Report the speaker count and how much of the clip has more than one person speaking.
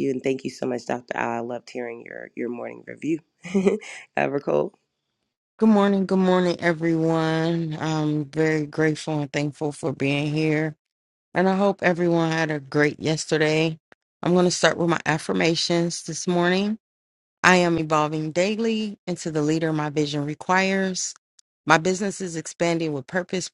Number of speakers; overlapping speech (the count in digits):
2, no overlap